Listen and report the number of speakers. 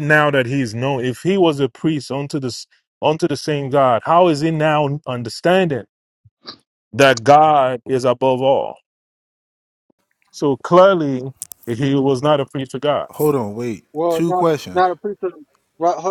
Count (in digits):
3